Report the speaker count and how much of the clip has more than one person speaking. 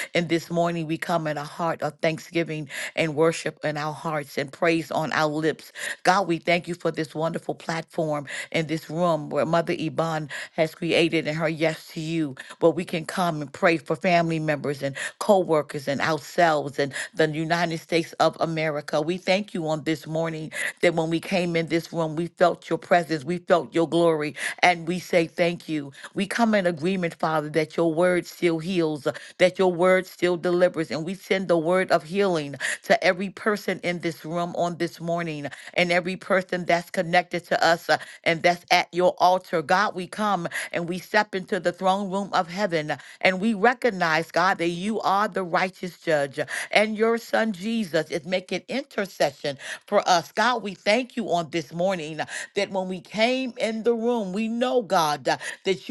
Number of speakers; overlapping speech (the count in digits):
1, no overlap